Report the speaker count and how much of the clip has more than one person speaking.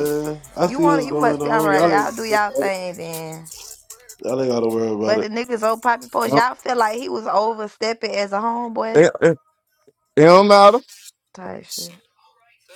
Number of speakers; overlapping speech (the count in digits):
3, about 19%